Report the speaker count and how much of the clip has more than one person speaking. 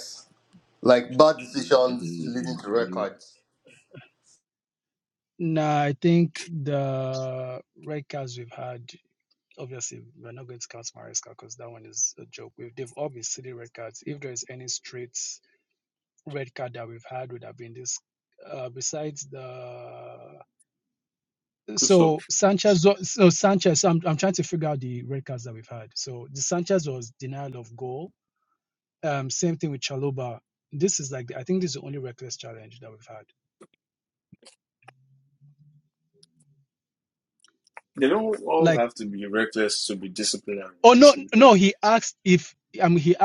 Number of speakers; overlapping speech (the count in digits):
3, about 5%